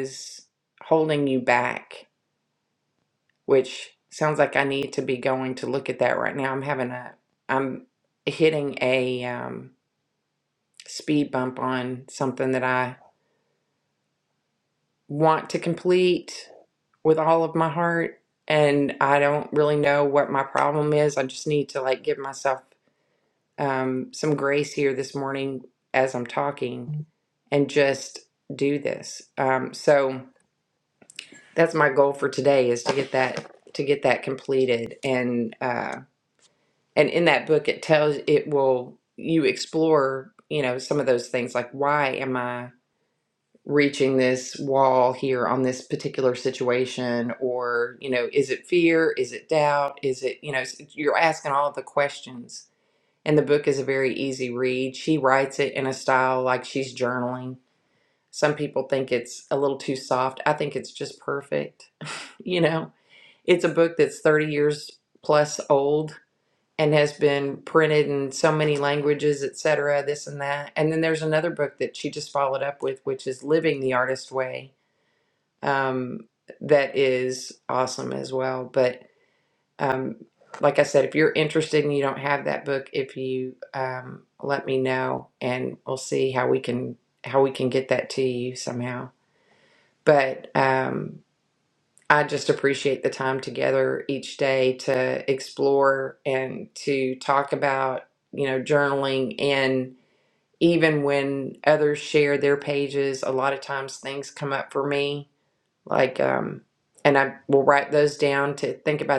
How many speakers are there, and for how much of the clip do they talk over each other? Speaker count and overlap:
1, no overlap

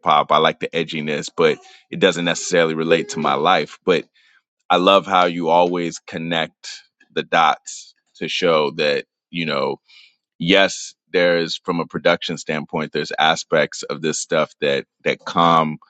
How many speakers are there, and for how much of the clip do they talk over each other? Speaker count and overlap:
1, no overlap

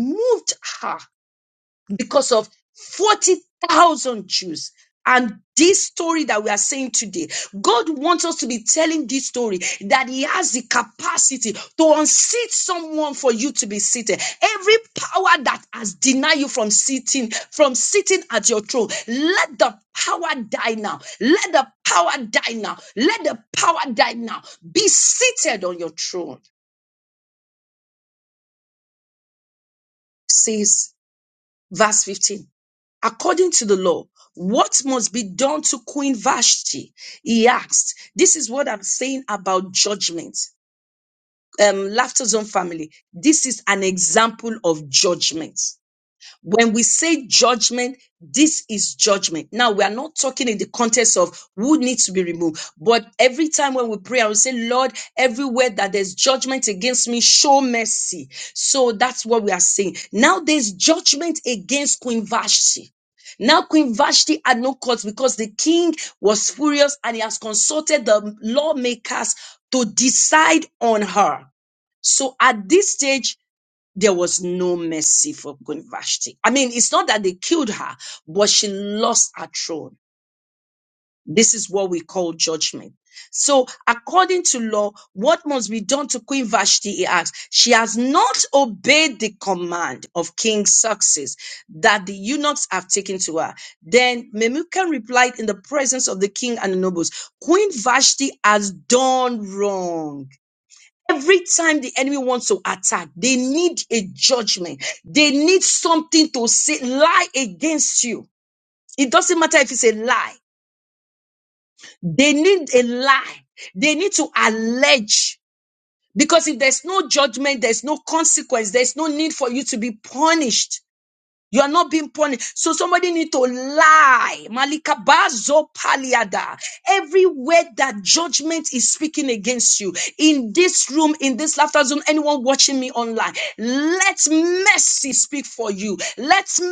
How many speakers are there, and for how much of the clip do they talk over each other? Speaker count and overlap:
1, no overlap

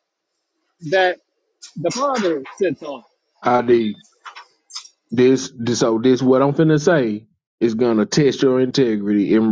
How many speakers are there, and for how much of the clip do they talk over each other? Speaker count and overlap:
2, no overlap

